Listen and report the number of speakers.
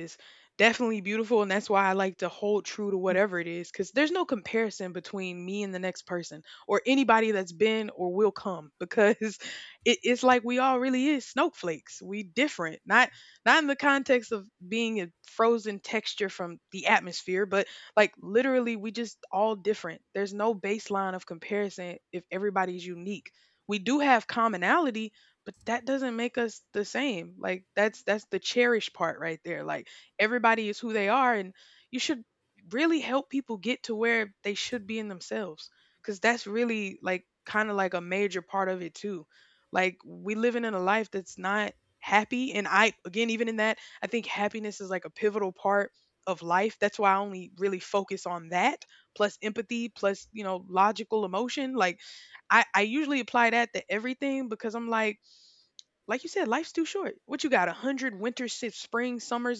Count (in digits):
1